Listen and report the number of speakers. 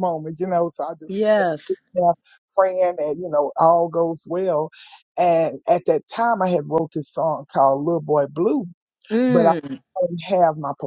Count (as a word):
two